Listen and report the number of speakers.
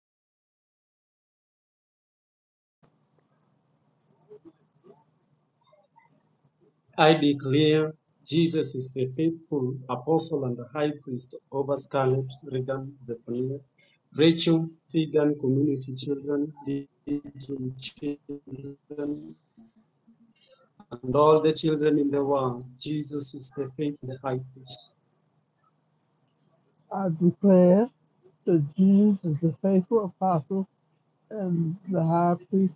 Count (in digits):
2